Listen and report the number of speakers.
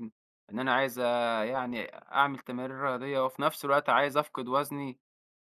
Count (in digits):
1